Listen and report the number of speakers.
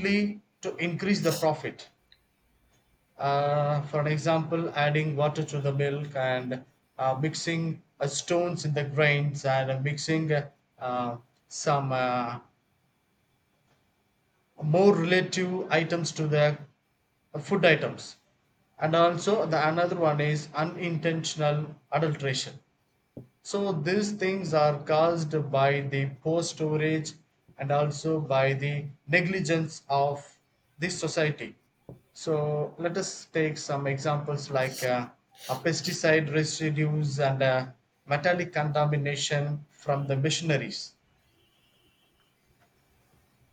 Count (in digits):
1